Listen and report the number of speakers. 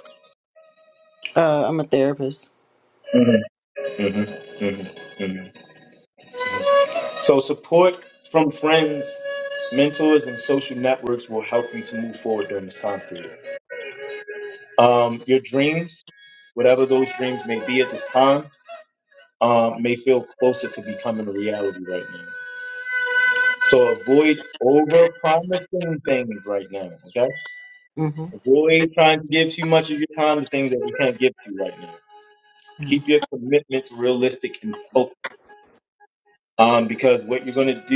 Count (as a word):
two